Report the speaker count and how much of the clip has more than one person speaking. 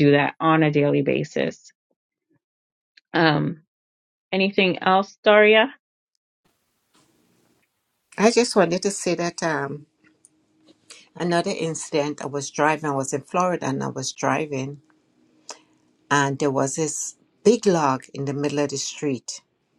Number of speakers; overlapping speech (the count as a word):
two, no overlap